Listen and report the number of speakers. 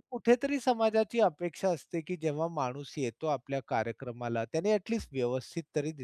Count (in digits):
1